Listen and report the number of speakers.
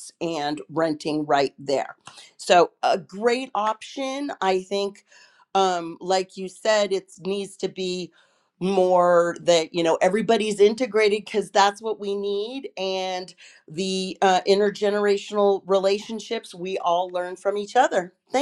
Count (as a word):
one